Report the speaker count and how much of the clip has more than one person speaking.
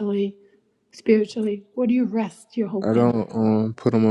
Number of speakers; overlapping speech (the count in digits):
2, about 9%